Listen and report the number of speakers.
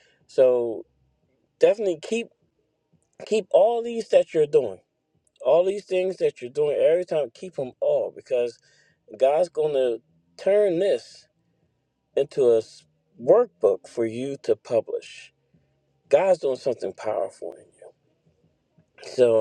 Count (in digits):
1